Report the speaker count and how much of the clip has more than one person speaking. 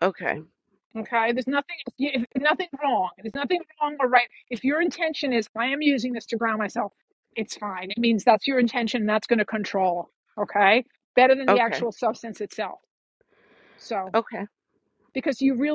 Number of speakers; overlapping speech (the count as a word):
two, about 2%